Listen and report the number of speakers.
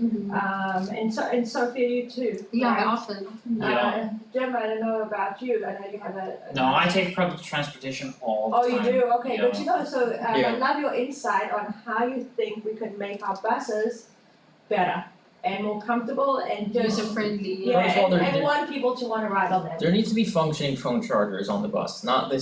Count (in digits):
4